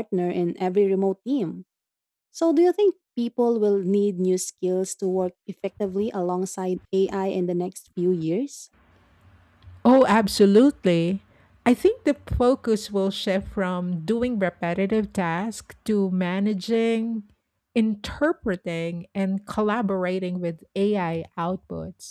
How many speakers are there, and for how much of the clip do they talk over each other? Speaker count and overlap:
2, no overlap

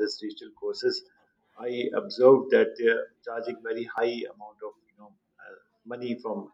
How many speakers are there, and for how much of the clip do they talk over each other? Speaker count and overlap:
1, no overlap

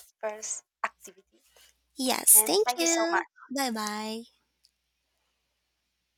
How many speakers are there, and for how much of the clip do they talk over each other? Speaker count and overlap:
2, about 15%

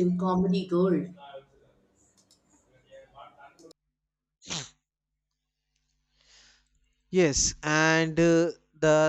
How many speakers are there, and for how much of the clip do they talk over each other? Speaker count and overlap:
2, no overlap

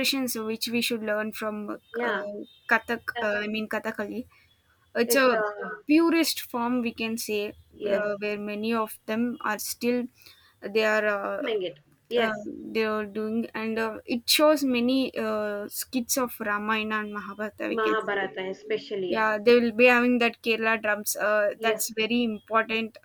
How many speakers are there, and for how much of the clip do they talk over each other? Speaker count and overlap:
2, about 11%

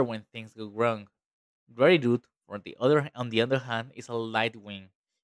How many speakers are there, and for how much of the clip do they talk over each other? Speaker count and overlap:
1, no overlap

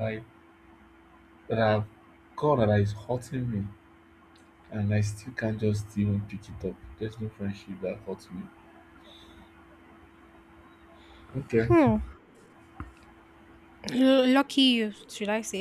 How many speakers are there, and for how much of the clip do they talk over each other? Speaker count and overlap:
2, about 1%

